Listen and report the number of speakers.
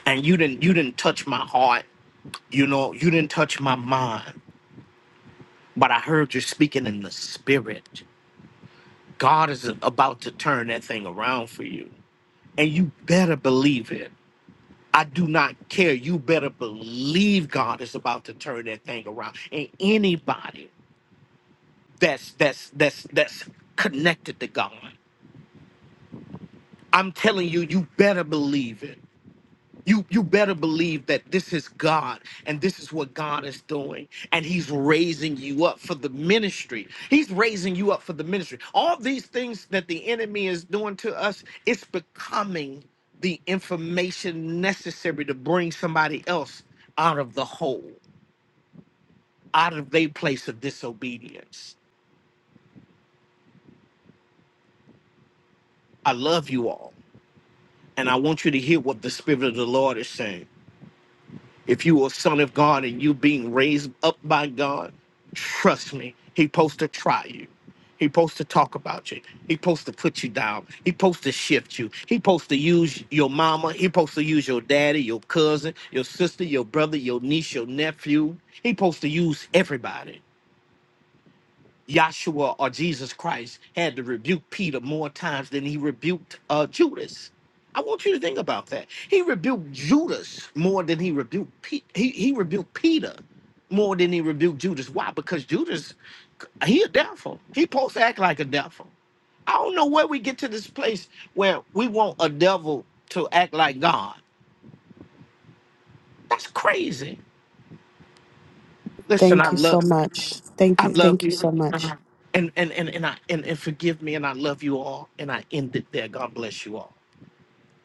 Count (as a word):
two